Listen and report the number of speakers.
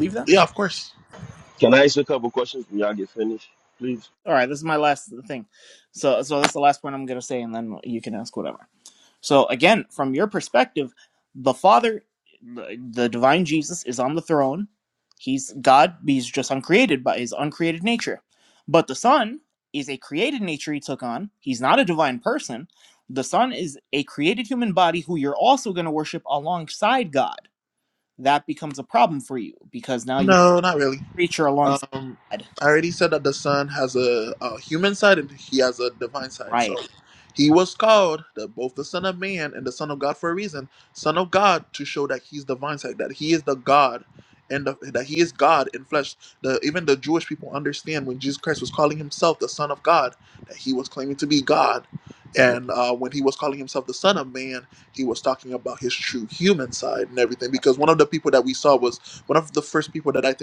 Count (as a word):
three